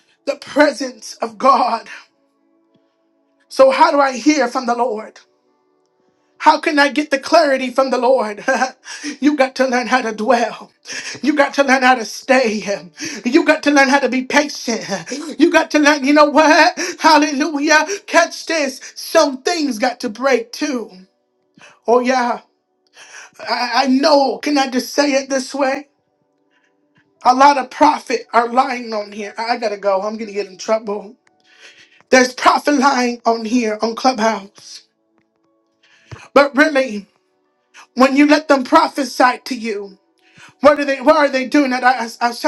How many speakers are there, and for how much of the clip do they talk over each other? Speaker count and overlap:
1, no overlap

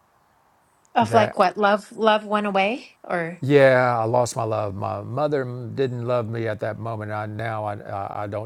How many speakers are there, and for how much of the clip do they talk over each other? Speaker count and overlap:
2, about 4%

